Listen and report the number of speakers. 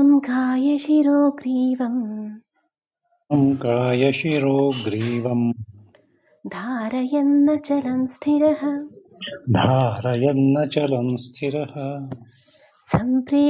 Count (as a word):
two